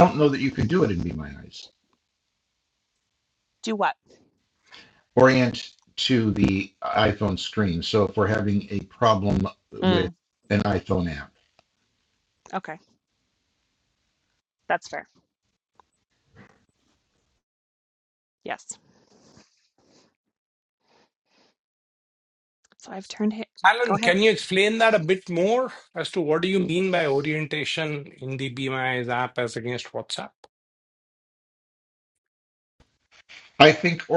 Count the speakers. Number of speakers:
three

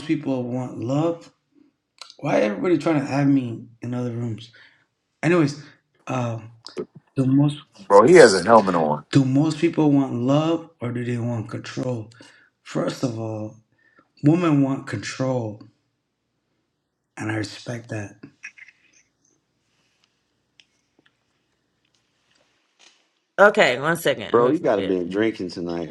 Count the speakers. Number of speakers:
four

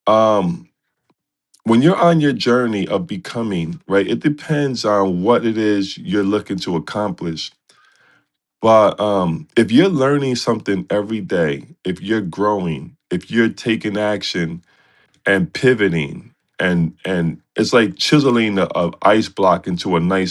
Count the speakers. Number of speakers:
one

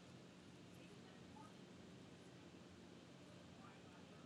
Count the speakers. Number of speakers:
zero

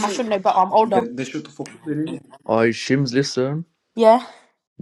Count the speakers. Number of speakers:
three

